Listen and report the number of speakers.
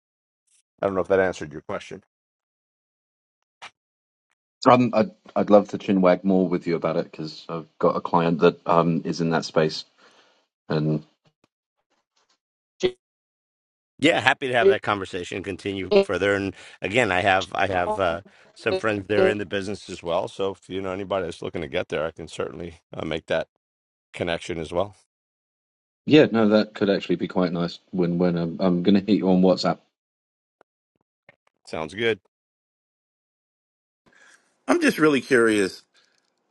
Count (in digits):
3